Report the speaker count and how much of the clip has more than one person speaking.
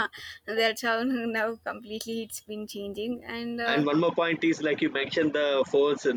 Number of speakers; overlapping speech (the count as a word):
two, about 3%